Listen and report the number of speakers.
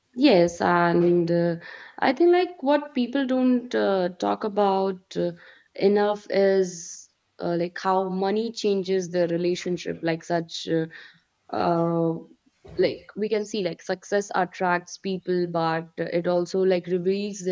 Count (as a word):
one